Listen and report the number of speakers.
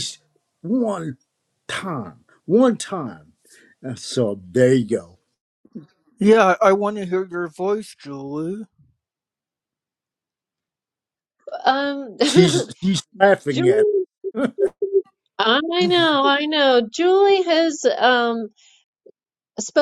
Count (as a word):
three